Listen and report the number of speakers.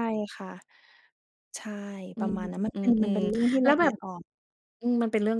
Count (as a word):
two